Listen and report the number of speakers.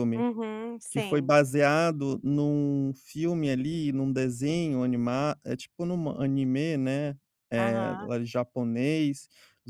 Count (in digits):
2